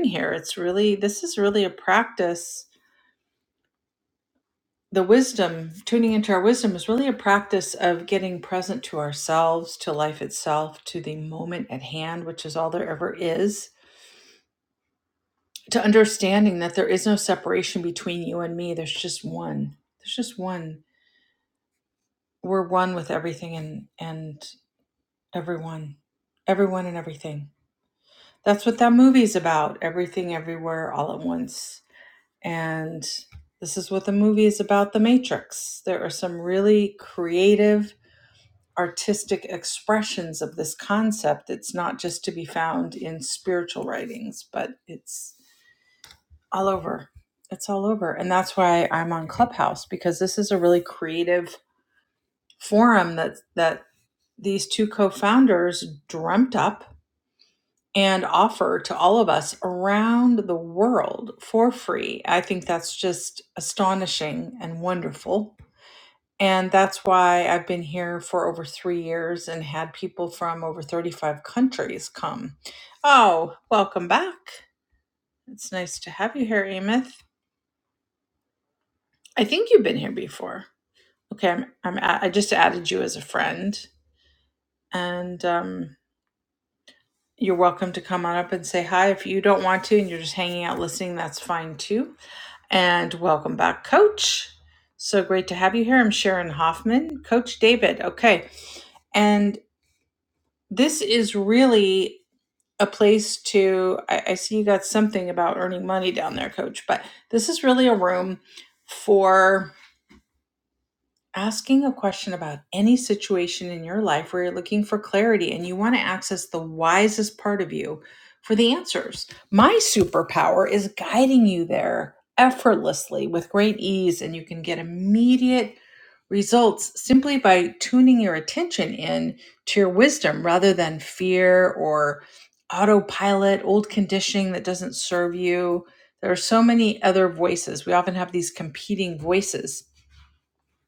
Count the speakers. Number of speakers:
1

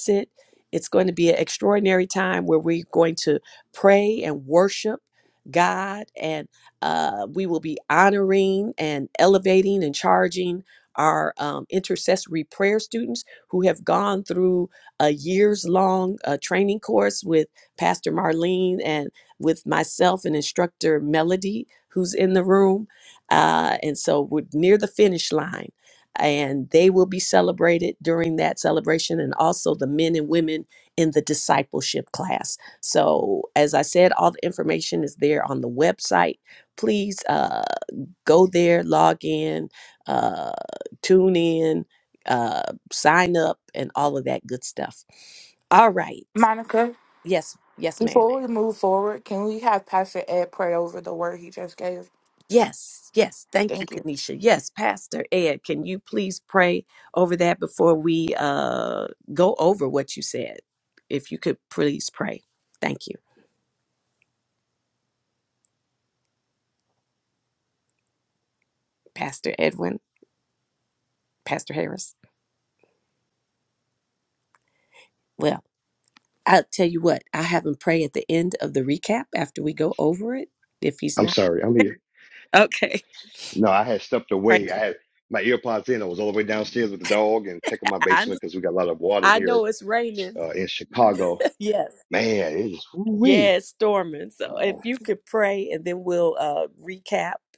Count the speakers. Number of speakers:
3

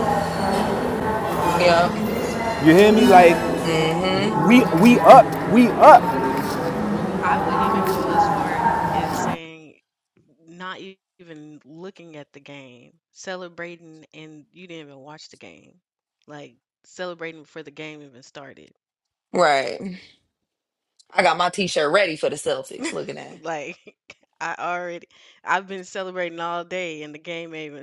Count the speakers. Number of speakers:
3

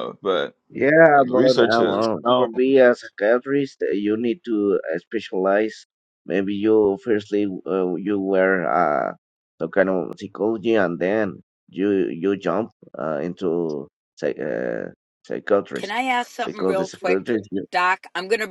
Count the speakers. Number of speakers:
3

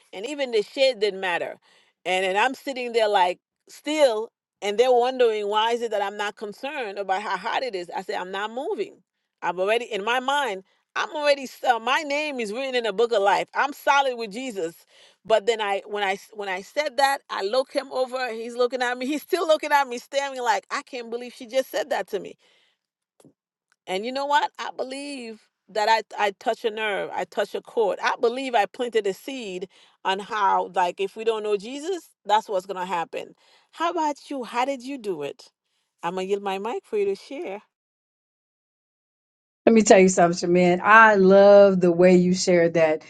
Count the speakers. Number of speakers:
2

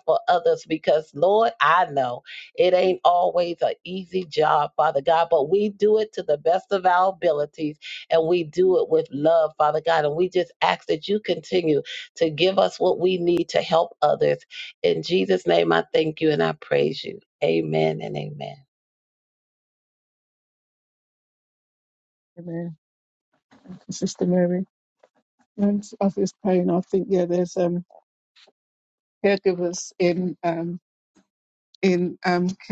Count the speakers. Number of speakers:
2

